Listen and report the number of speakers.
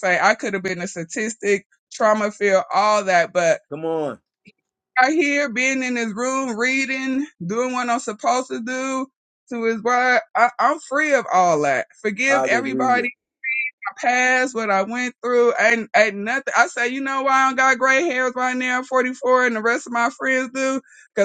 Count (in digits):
2